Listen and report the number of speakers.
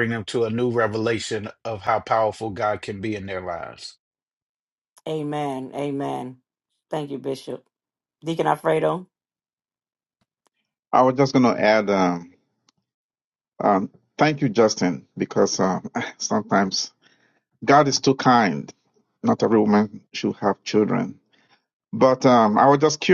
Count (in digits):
3